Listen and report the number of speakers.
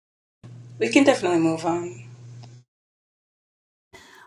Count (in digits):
1